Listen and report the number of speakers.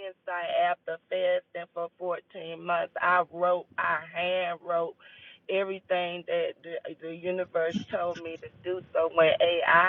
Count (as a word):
one